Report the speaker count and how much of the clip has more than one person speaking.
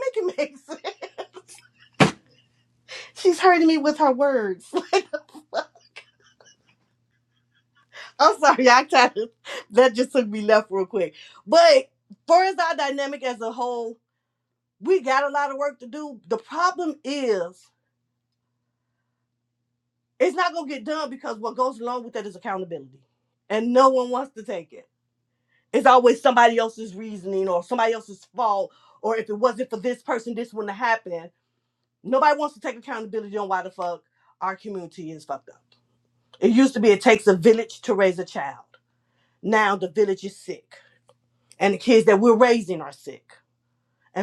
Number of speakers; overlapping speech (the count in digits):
1, no overlap